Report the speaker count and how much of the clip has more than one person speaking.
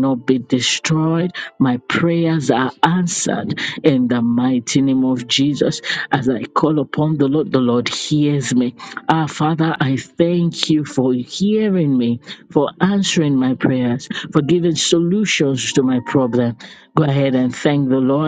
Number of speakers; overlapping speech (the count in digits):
1, no overlap